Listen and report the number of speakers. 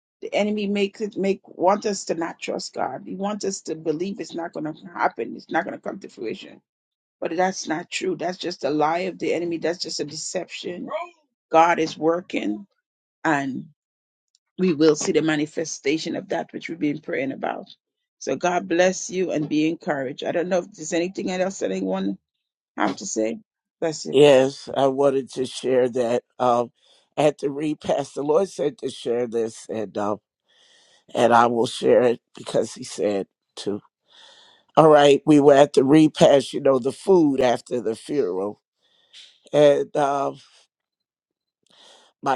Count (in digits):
2